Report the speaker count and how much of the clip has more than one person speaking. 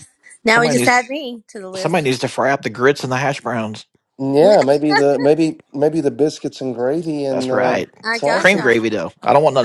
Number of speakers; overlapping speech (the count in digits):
3, about 18%